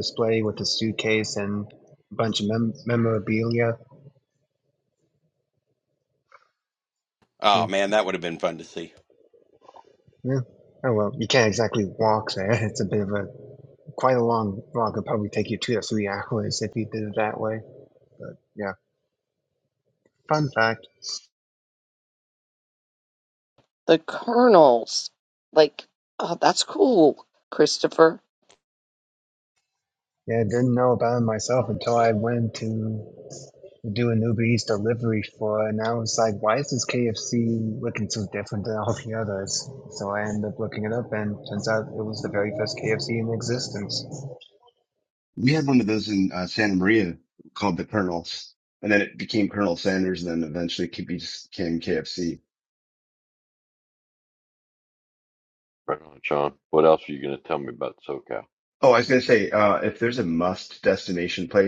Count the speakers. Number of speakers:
5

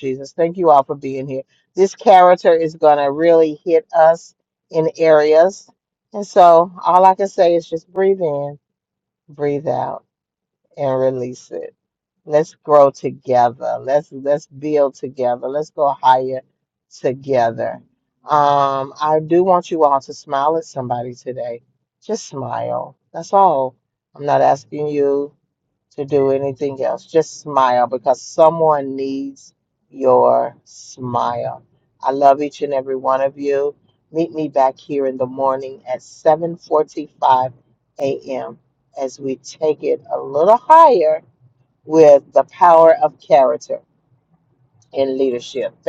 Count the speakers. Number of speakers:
1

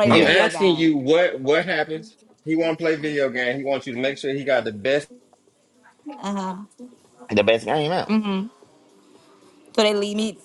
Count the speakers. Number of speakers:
3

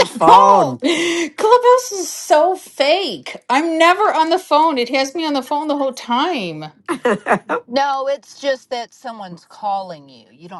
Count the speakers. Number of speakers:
3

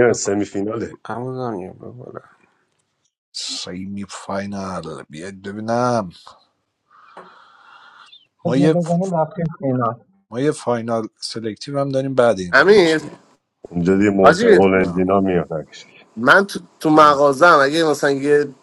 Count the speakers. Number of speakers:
5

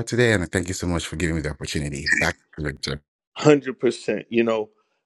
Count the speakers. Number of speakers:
2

